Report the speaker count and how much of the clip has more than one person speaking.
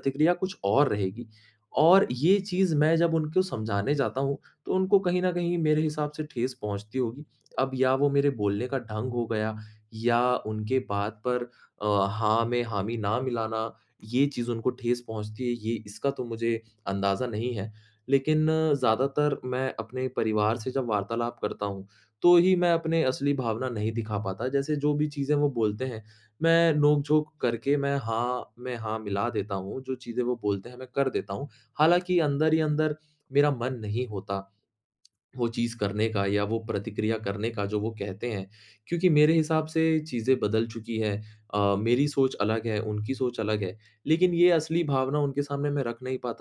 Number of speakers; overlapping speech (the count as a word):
one, no overlap